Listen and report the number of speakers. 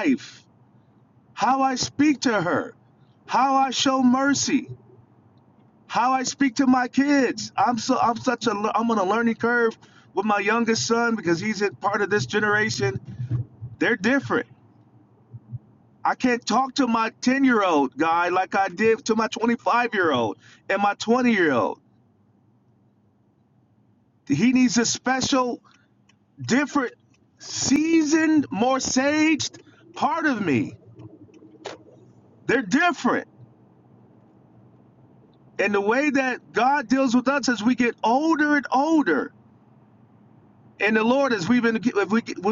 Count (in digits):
1